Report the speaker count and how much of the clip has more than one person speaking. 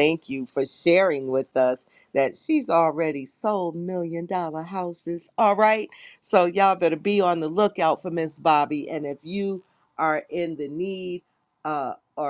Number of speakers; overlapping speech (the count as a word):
one, no overlap